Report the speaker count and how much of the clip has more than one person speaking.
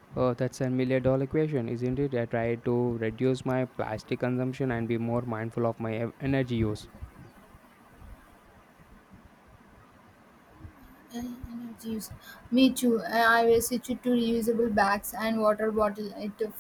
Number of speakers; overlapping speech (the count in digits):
2, no overlap